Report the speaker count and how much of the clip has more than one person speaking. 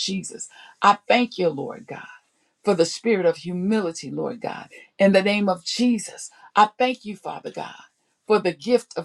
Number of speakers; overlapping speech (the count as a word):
one, no overlap